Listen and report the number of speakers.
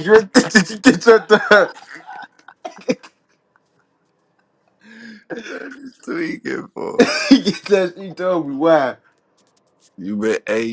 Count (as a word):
two